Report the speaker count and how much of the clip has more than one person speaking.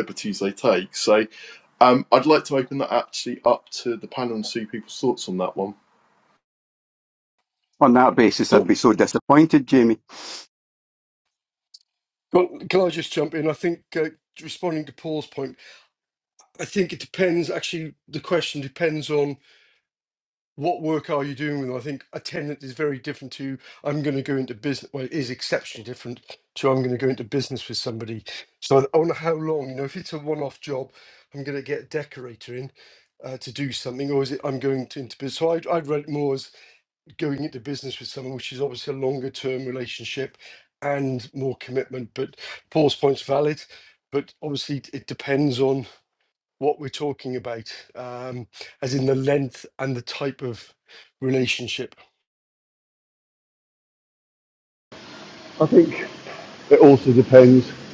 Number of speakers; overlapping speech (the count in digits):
4, under 1%